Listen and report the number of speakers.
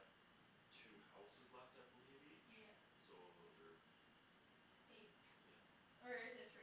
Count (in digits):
2